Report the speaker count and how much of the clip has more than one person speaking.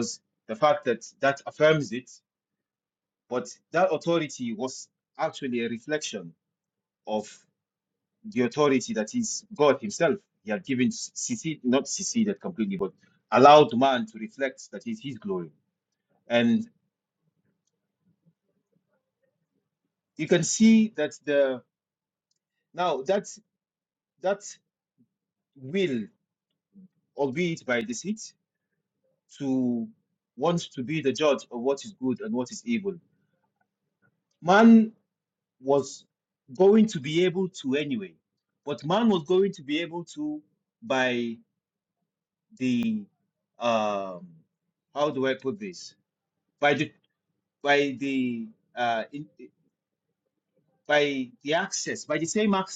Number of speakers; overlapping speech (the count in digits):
1, no overlap